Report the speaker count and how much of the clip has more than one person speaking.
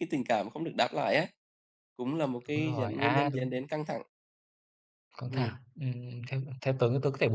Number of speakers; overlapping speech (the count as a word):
two, about 15%